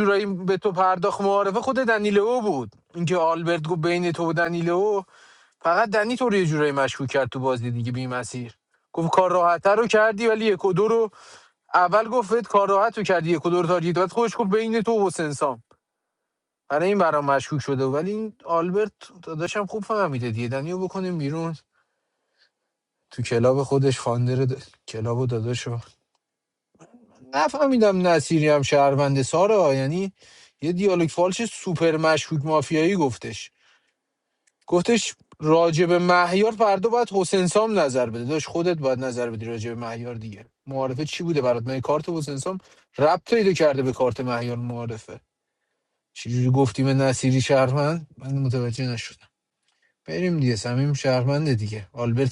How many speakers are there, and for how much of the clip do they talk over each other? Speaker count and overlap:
1, no overlap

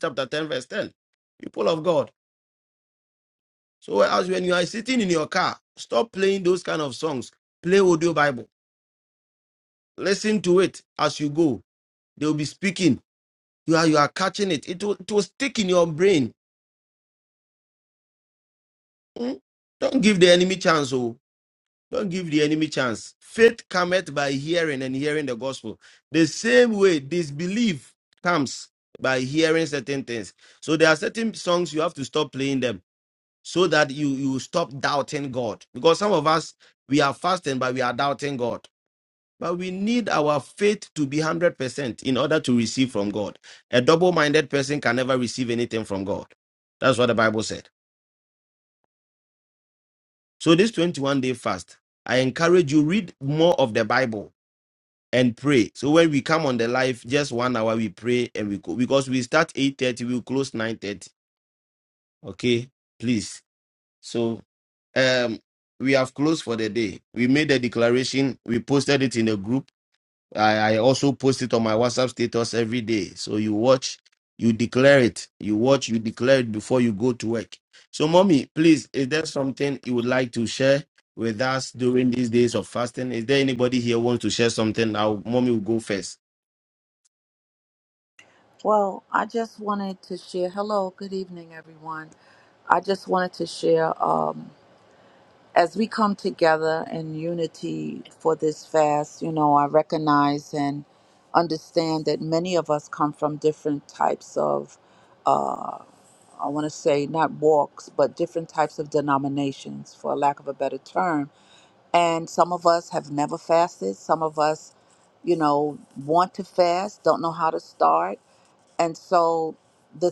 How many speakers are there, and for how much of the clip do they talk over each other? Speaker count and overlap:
2, no overlap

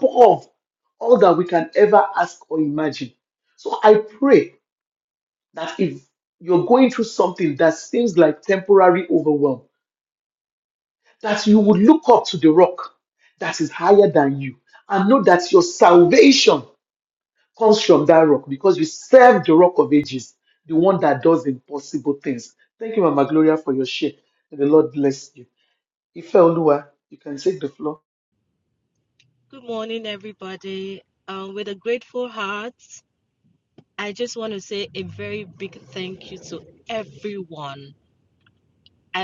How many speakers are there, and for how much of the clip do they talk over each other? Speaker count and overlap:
2, no overlap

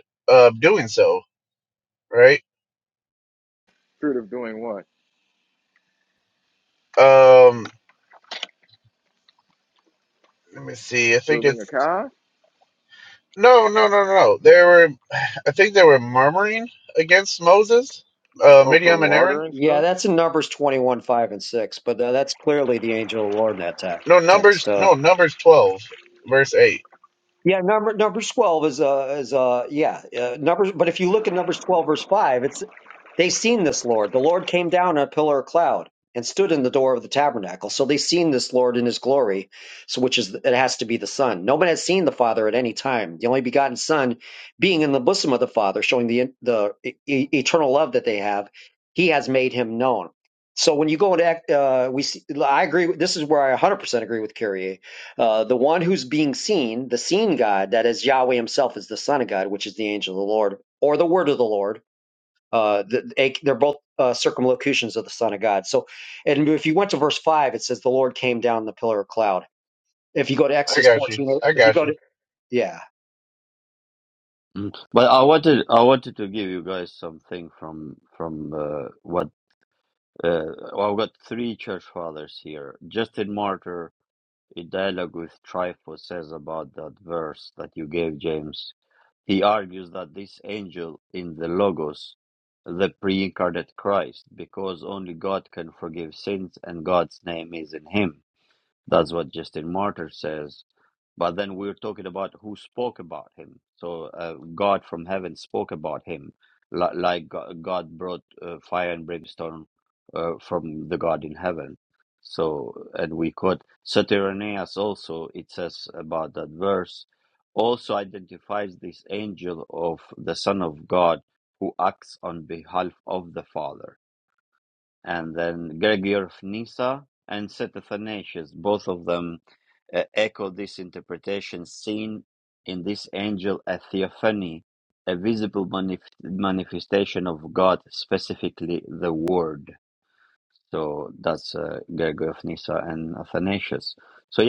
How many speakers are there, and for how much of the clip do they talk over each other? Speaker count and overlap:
4, about 2%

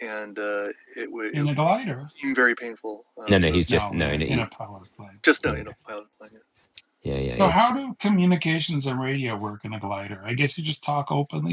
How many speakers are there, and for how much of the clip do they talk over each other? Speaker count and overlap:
3, about 16%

